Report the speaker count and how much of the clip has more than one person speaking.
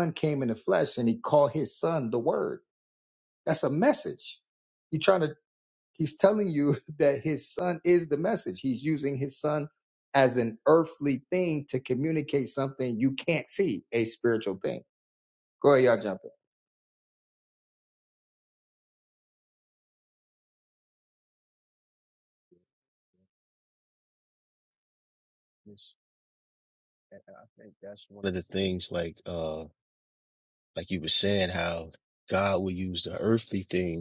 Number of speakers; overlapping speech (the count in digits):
2, no overlap